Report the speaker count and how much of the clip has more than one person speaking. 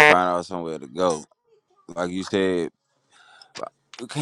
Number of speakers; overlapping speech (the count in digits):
1, no overlap